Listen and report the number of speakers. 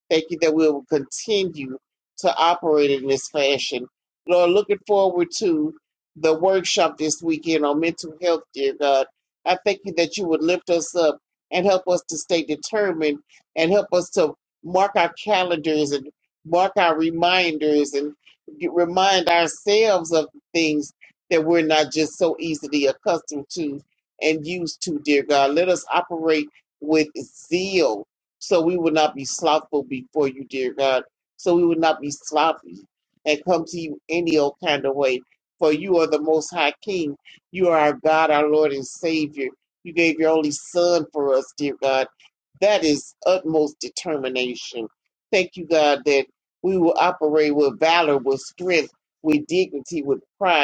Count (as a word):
one